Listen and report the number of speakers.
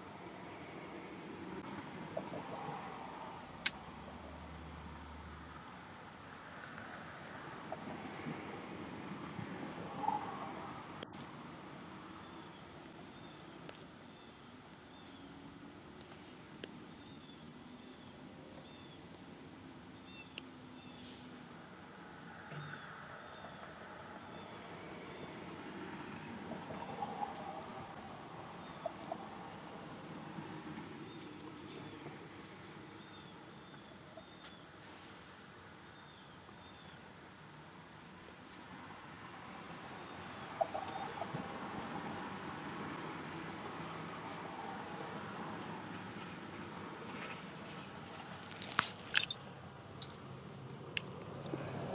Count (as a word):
zero